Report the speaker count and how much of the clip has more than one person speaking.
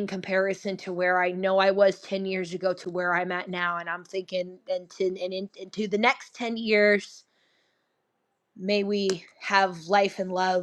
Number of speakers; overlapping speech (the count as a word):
one, no overlap